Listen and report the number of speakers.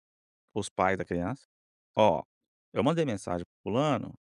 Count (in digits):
1